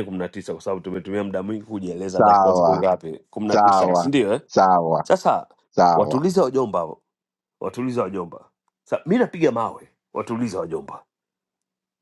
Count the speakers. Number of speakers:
two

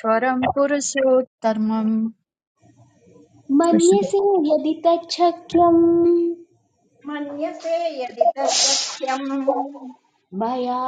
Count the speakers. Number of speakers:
three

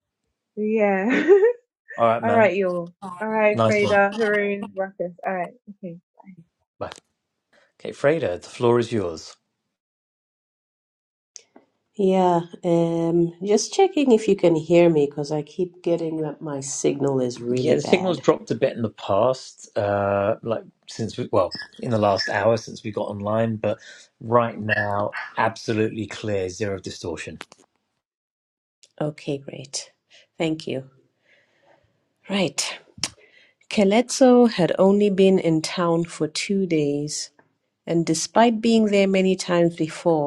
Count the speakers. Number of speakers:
three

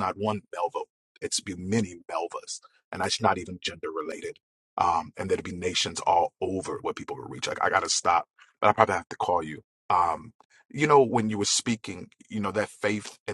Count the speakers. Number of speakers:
one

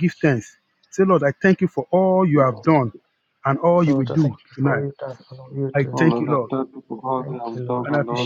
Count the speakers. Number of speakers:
three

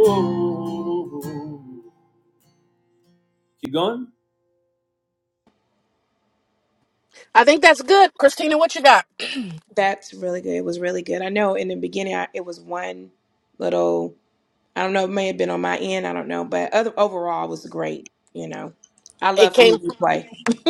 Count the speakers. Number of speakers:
three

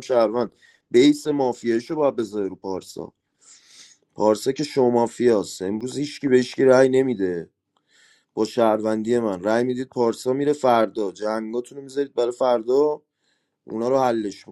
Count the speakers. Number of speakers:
one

